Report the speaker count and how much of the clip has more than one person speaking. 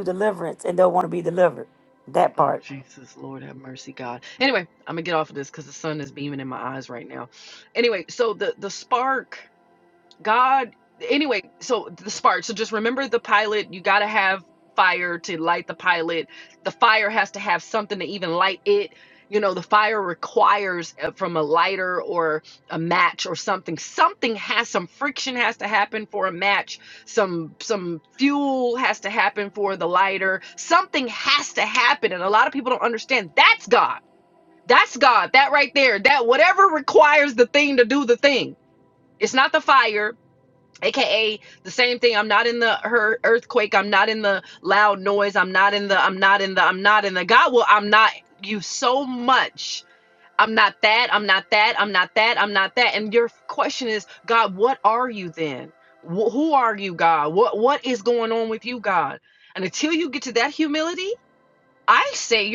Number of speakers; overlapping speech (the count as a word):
two, under 1%